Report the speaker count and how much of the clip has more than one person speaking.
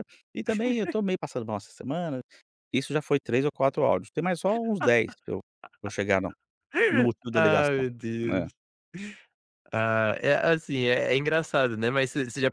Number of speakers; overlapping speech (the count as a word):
two, about 6%